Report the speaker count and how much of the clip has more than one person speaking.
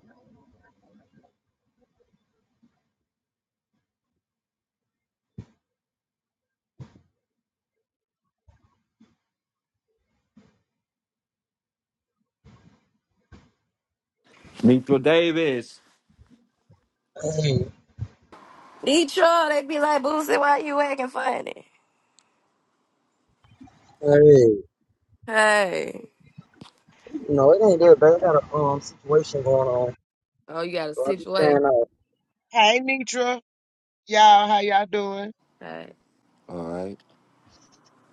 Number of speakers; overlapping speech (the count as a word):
four, about 2%